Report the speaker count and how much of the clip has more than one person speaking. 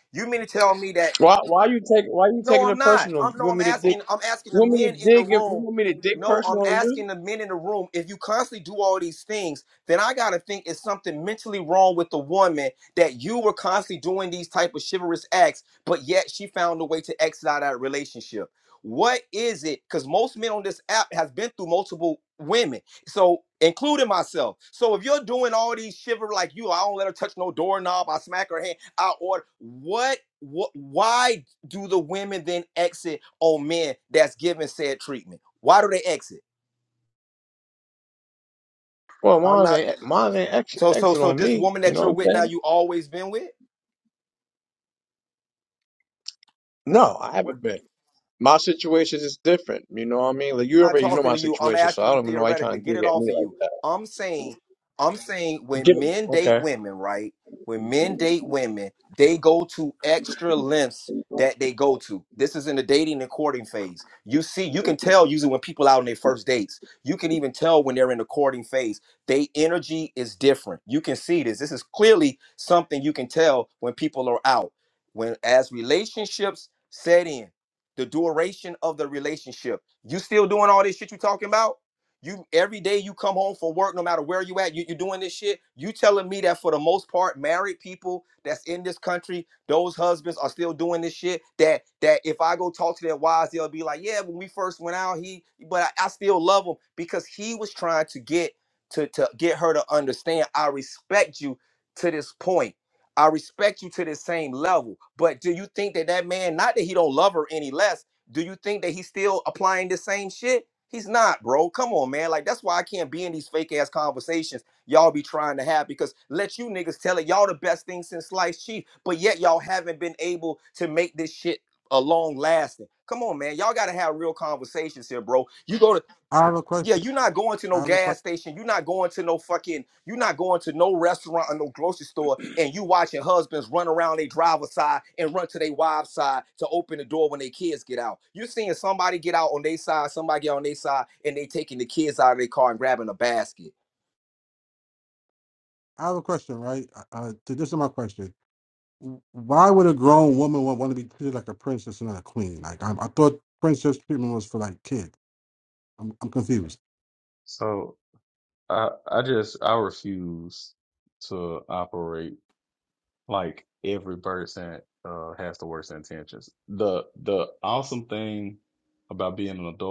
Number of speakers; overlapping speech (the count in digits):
4, about 6%